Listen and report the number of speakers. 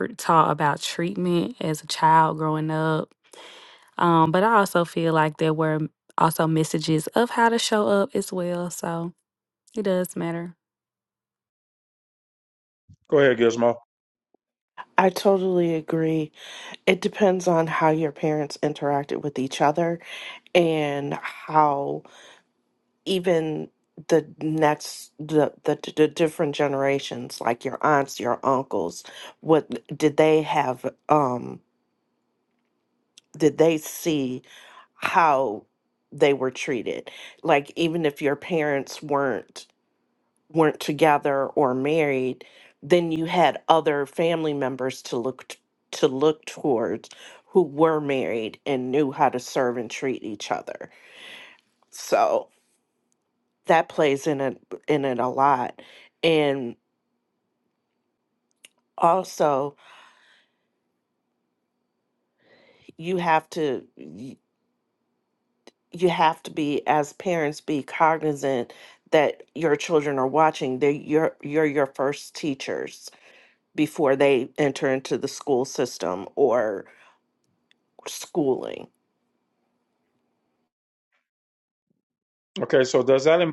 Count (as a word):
three